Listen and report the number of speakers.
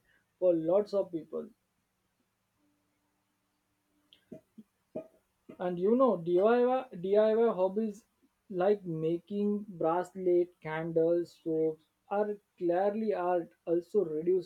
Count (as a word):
one